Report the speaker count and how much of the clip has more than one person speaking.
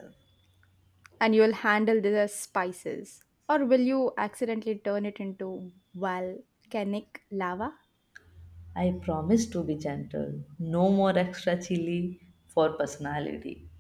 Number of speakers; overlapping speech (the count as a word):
two, no overlap